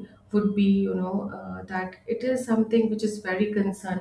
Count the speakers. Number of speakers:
1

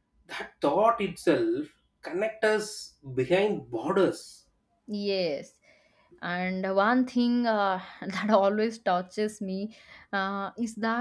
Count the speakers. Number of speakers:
2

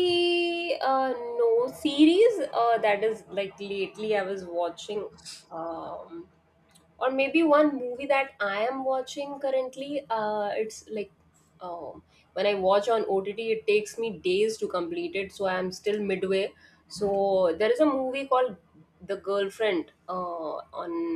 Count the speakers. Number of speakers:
1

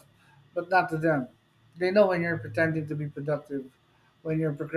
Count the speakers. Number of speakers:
1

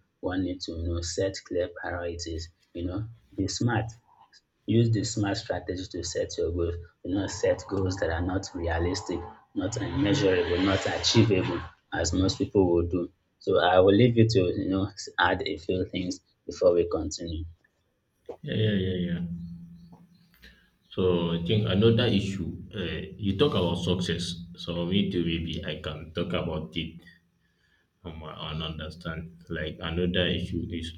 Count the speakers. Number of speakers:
2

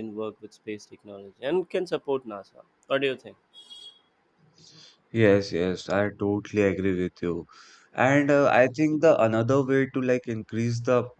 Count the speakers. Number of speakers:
2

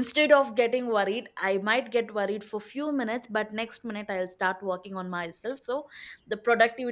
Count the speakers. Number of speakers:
1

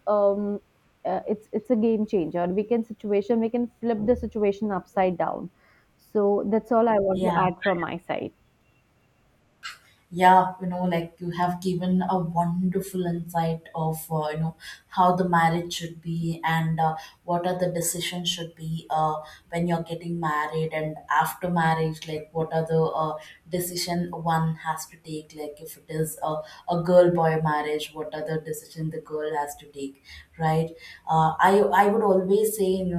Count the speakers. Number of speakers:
2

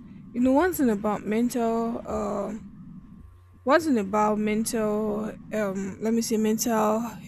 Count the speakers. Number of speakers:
1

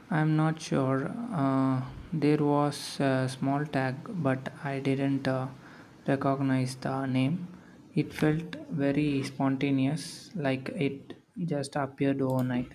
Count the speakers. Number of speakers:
1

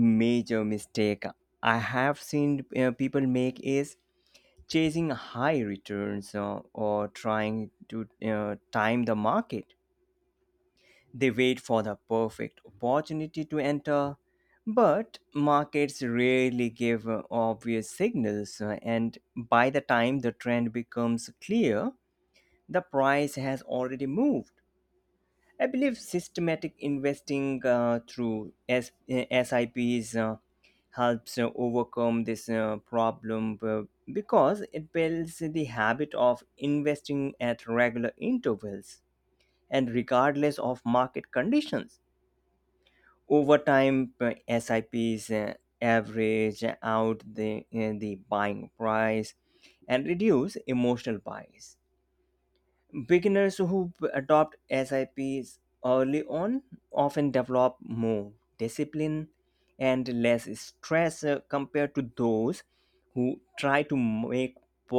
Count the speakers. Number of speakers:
1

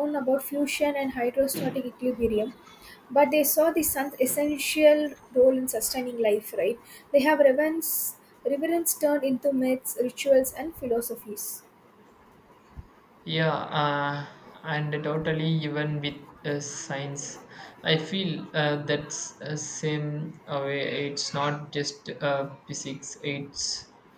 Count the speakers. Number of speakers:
2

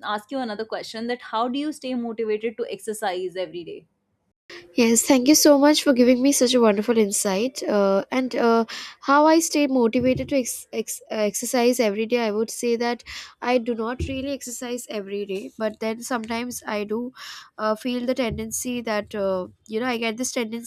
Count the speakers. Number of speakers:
2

